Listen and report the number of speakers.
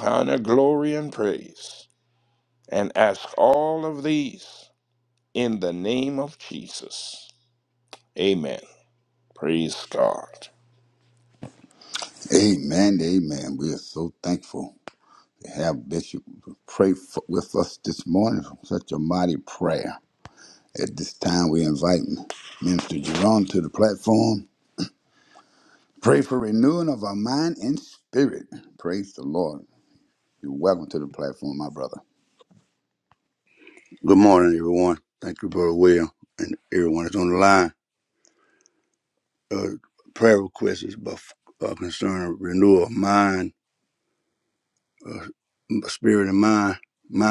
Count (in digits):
3